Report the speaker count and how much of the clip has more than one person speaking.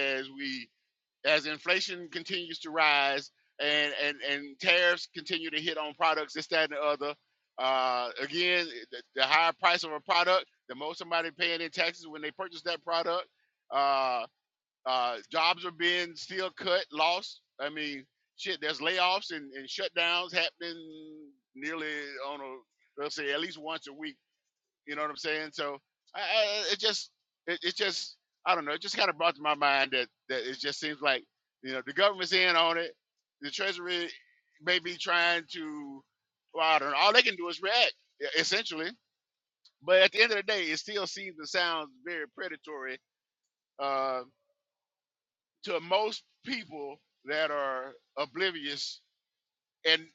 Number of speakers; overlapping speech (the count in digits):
1, no overlap